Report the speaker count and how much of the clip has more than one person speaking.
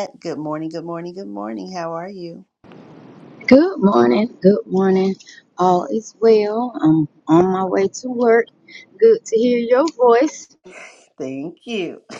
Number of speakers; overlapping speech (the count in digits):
2, no overlap